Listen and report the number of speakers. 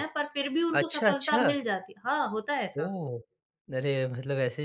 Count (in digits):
2